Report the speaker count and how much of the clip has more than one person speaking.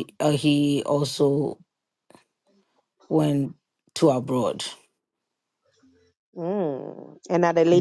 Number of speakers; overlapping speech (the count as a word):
two, about 1%